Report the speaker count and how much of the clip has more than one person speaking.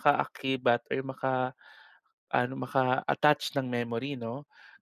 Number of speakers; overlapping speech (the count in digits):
1, no overlap